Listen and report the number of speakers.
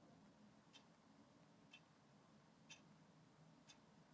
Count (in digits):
0